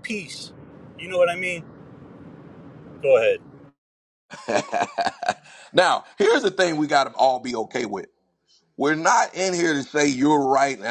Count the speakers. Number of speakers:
2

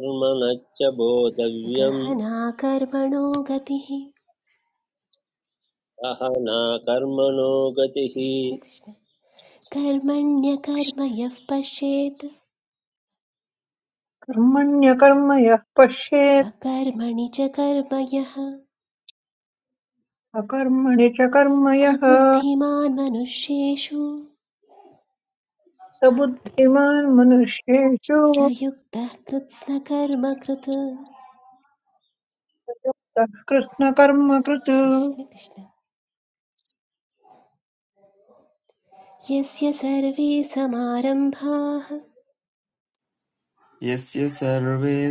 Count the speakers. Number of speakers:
4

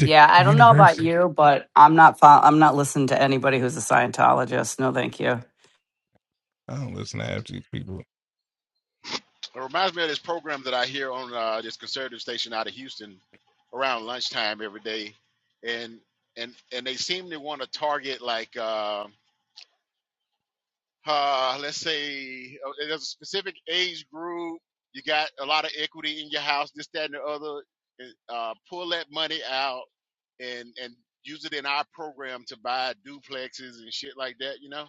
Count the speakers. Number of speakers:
3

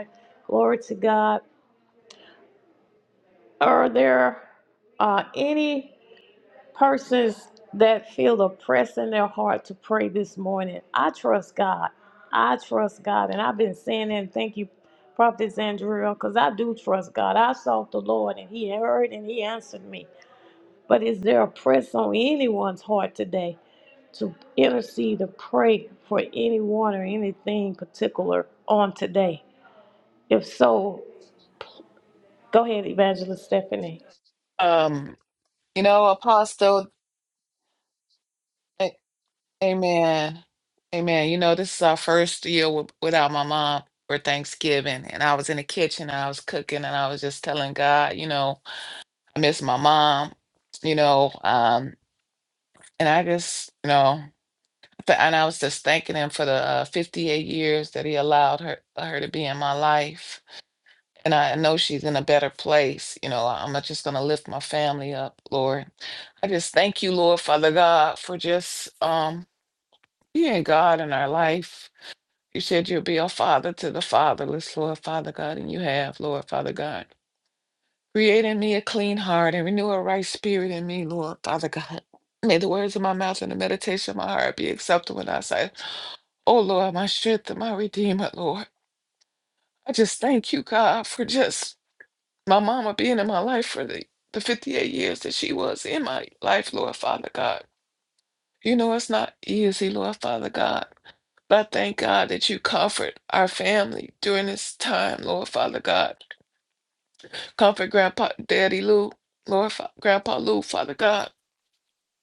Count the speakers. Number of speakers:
2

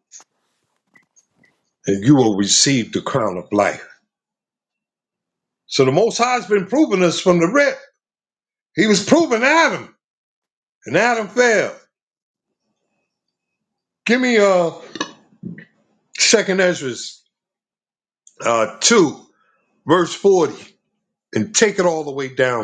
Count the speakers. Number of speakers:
1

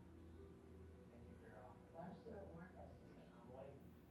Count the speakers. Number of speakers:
1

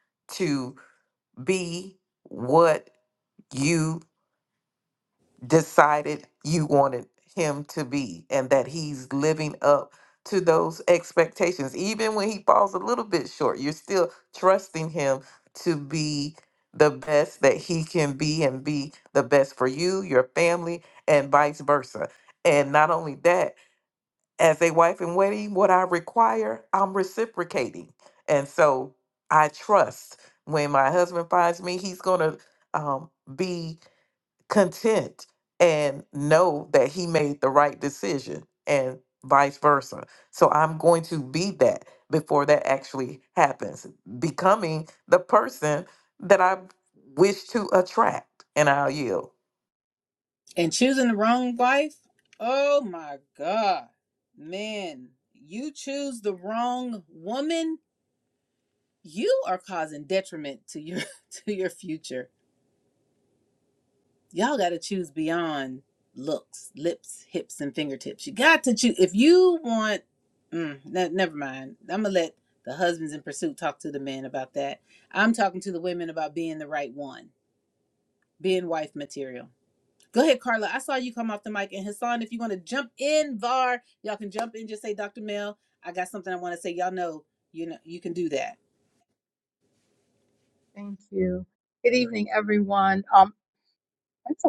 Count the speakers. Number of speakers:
3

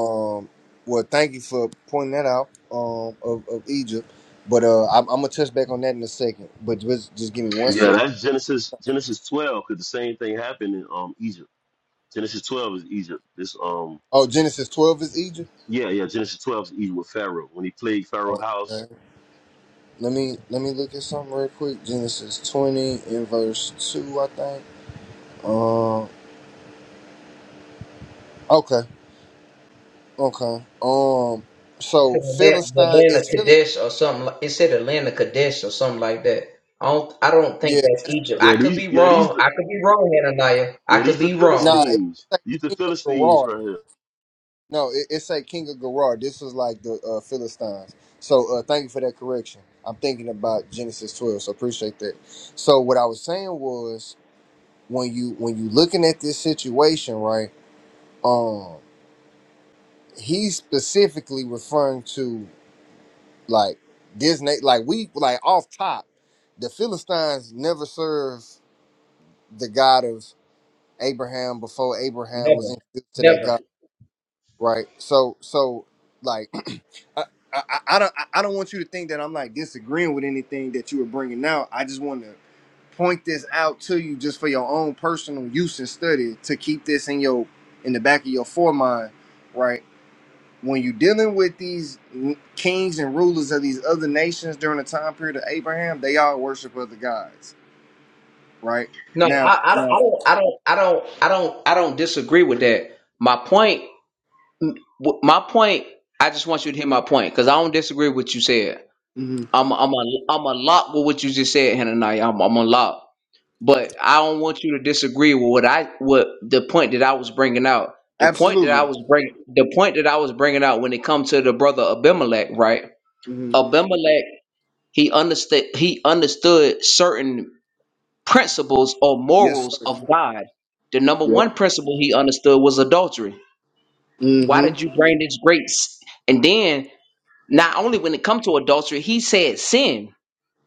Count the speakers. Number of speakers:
3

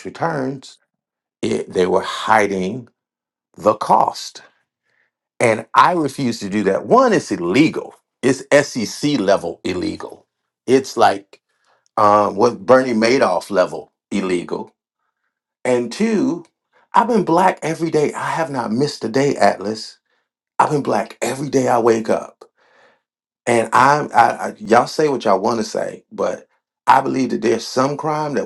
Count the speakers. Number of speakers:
1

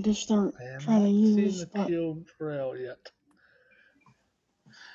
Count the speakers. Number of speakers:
2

